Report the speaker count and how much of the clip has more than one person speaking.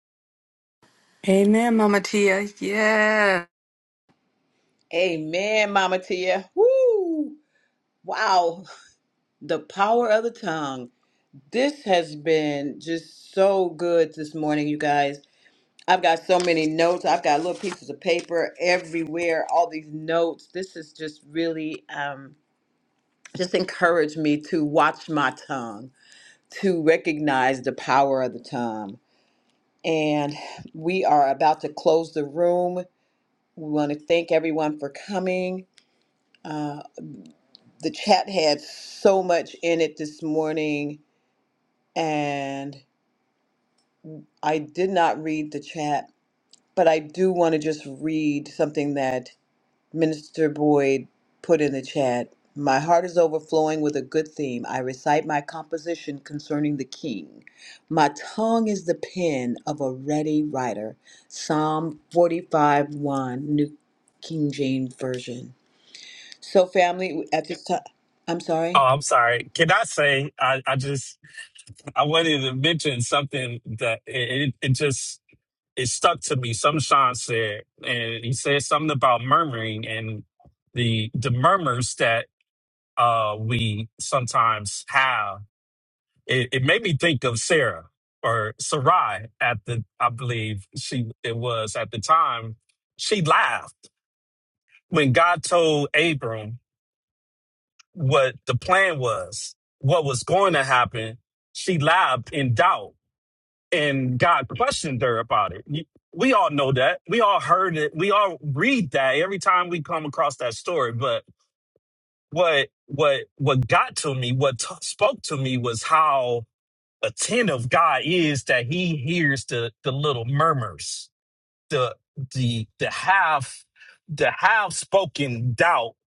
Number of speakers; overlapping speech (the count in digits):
3, under 1%